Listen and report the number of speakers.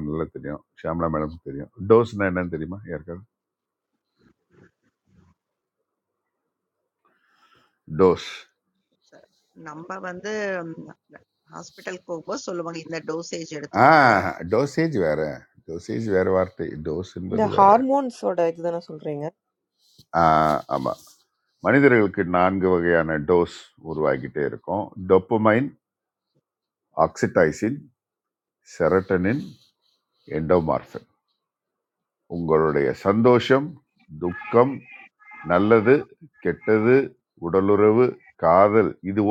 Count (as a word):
three